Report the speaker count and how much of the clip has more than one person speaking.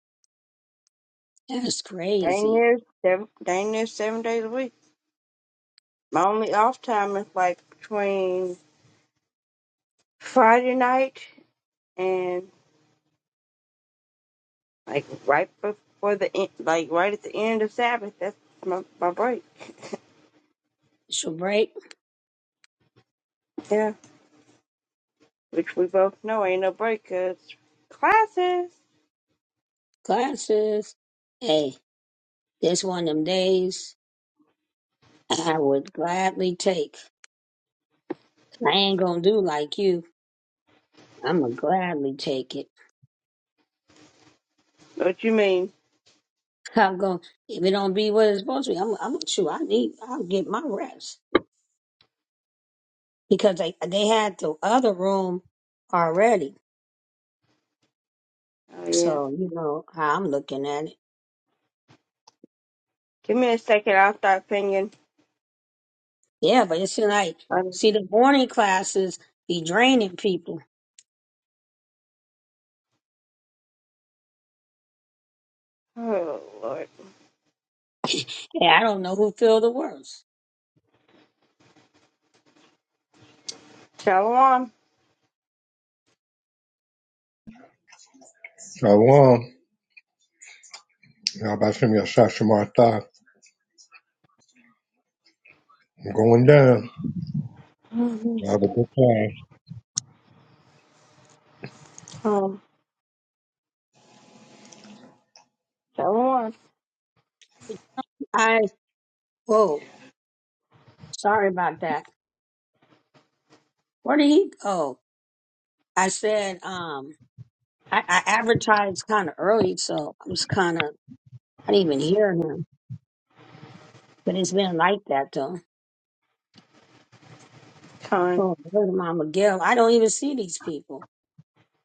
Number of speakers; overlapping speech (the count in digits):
3, about 1%